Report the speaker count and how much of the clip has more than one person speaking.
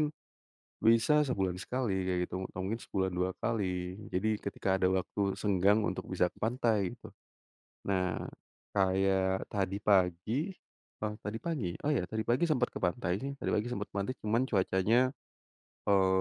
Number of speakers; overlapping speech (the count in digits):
1, no overlap